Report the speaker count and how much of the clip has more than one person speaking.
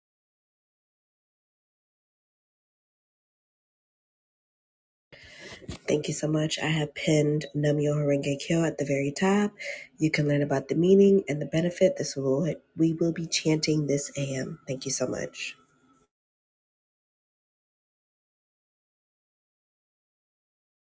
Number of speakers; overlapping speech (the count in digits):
1, no overlap